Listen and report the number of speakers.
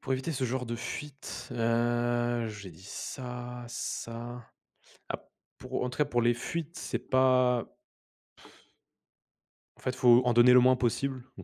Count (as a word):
one